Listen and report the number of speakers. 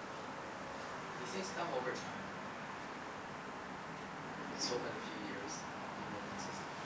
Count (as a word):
one